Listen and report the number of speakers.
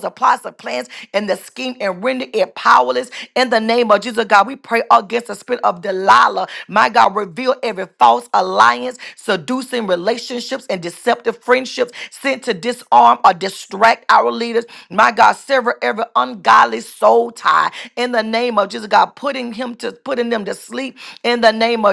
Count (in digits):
1